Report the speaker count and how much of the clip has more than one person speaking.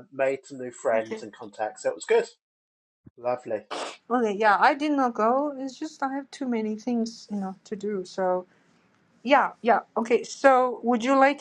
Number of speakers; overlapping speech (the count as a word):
two, about 3%